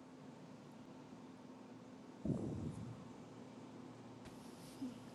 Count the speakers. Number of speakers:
0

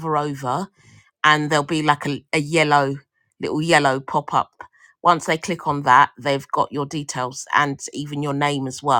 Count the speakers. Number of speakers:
1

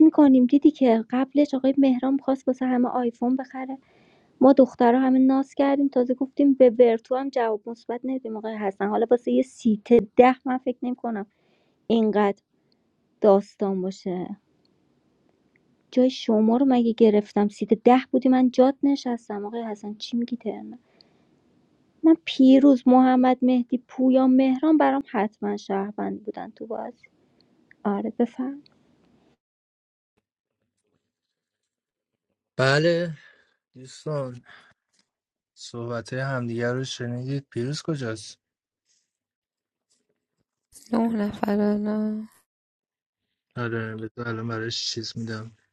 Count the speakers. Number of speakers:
3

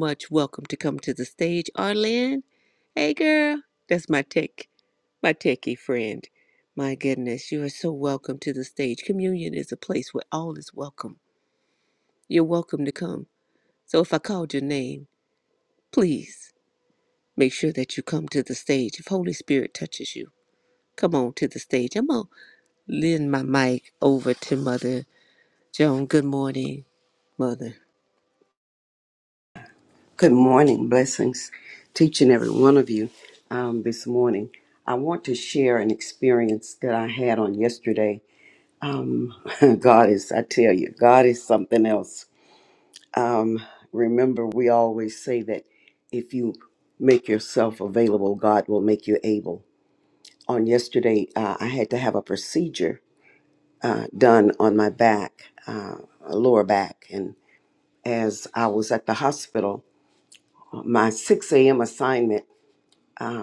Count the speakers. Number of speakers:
2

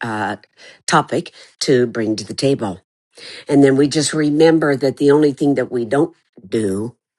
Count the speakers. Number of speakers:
1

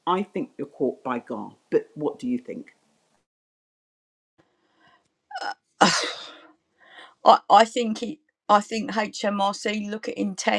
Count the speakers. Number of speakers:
2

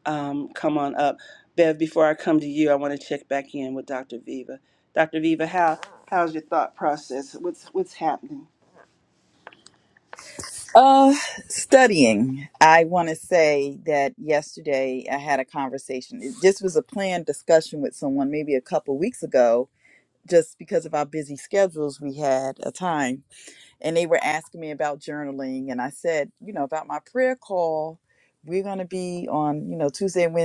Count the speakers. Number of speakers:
2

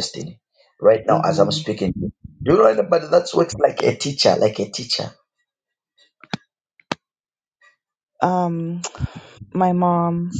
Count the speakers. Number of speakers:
2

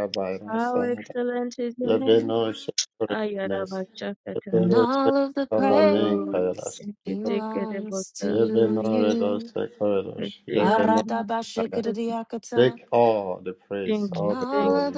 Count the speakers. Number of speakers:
3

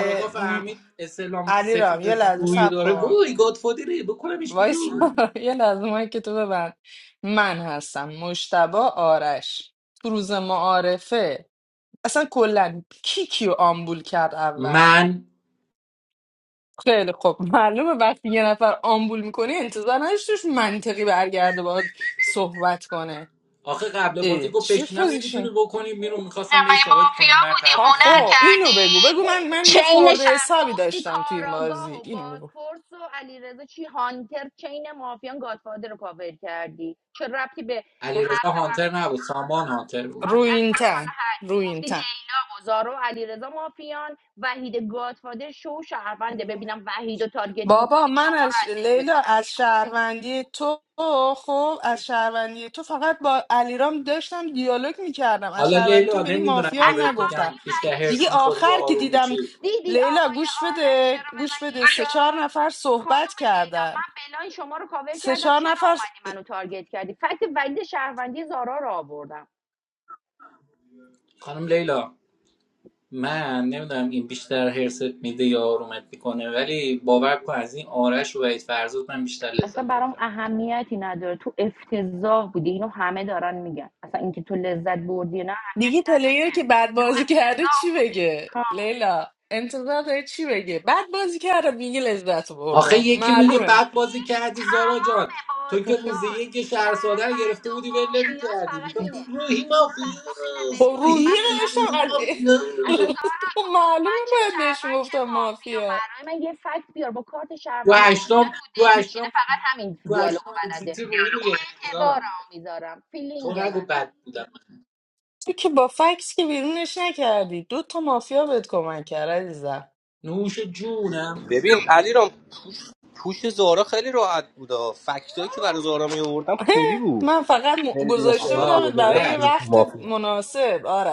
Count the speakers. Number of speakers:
4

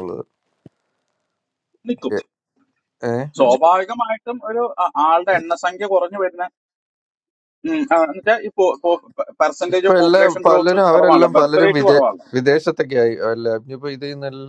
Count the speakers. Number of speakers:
2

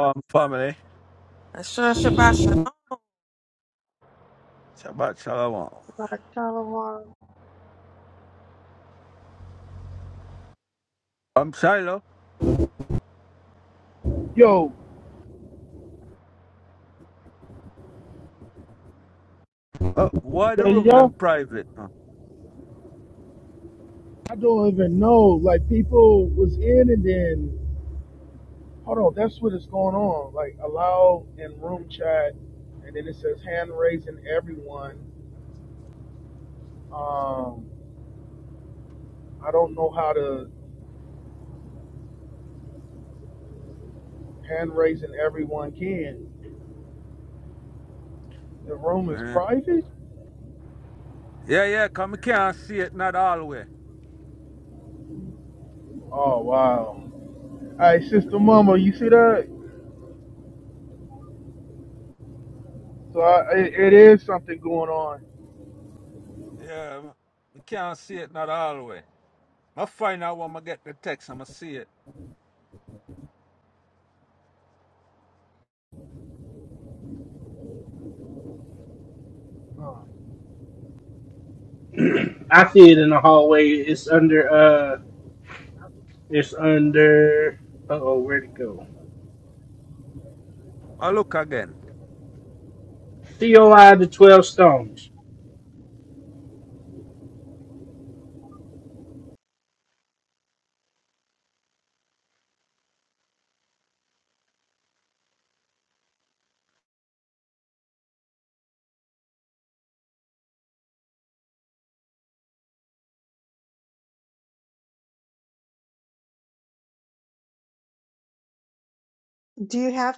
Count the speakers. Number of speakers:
5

